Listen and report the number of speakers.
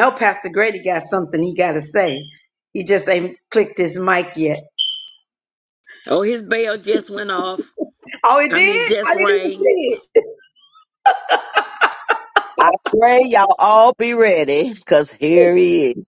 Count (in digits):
3